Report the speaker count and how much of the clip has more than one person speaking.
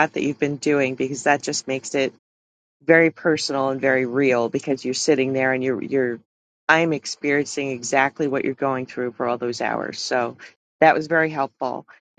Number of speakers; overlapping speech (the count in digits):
1, no overlap